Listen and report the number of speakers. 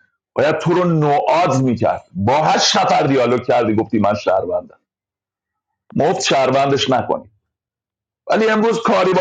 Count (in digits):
1